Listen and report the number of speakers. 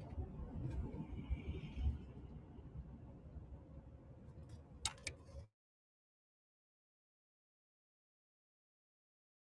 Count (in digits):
0